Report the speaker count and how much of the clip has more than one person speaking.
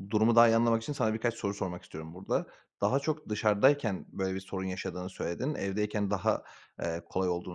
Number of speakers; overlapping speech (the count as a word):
one, no overlap